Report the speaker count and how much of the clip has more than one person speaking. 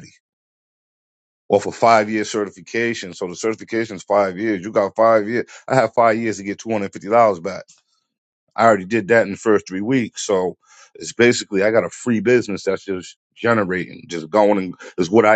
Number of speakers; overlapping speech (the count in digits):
1, no overlap